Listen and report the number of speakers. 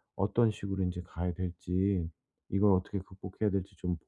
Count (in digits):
1